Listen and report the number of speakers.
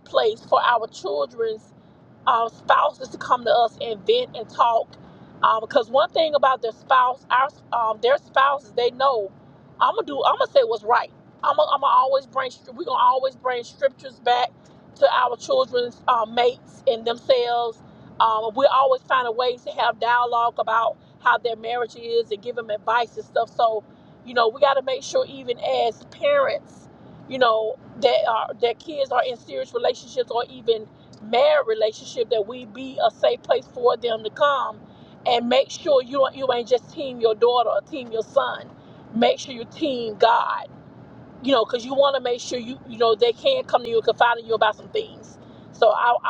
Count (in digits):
1